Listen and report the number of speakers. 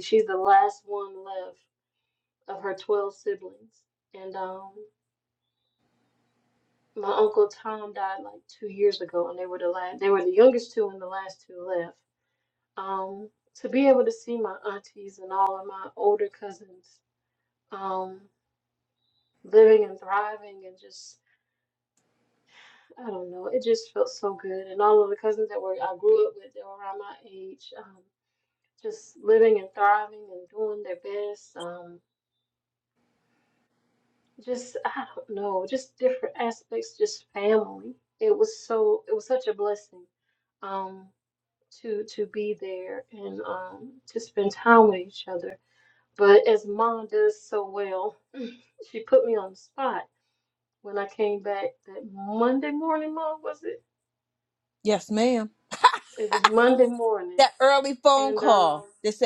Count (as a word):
two